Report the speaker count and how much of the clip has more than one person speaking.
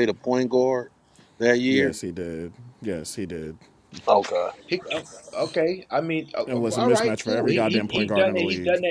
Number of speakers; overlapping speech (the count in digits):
3, about 29%